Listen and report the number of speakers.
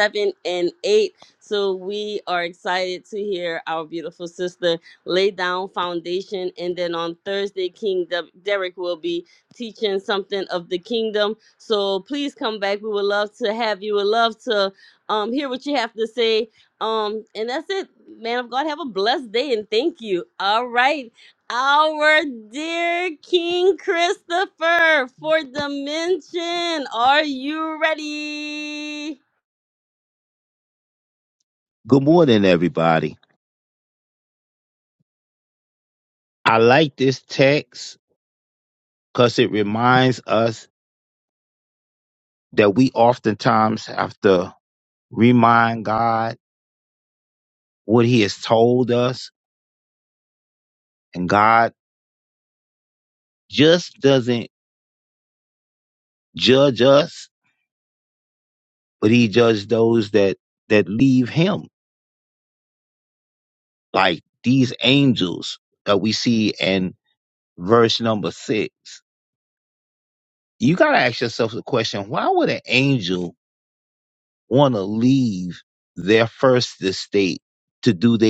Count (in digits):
2